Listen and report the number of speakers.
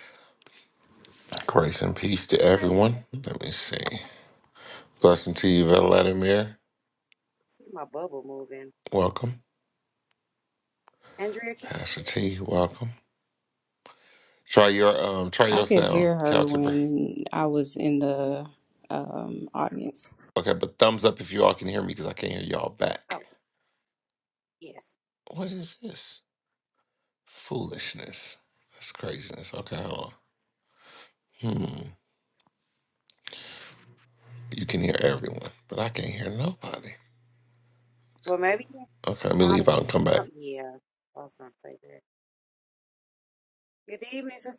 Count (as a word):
three